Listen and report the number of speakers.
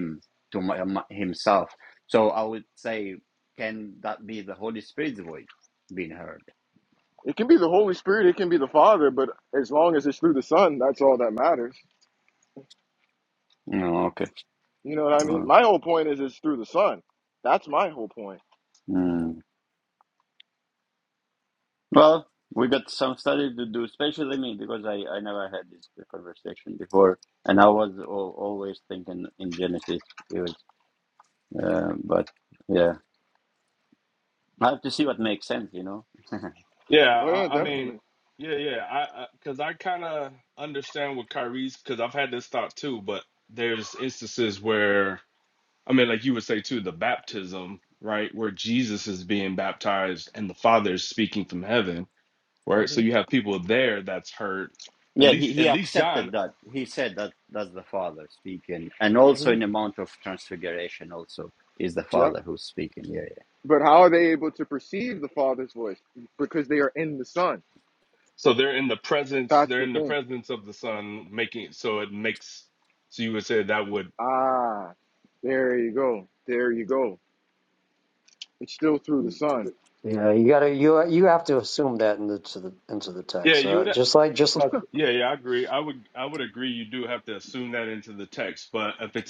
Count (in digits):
4